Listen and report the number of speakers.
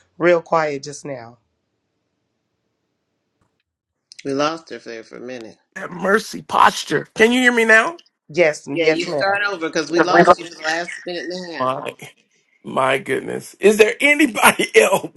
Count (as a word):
three